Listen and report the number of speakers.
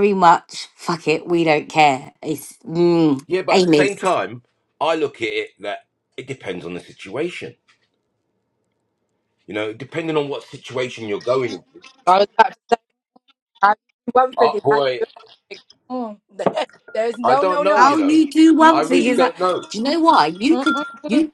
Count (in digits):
3